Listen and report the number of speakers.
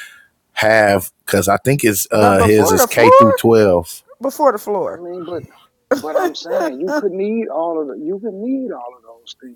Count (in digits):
3